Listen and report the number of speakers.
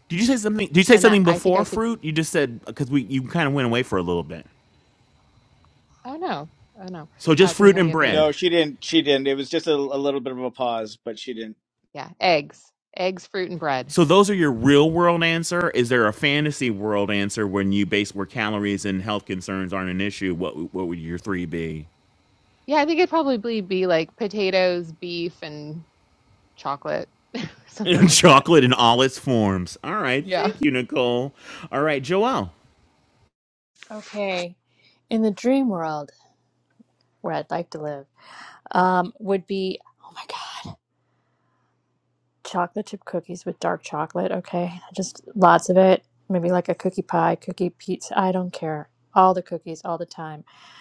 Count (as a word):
four